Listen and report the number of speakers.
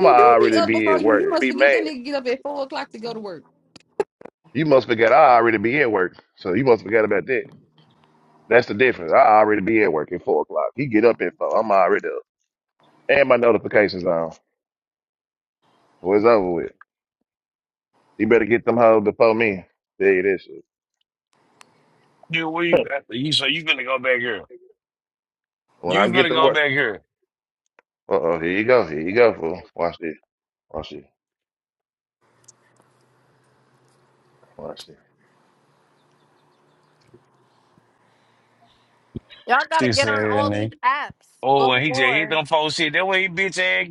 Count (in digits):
4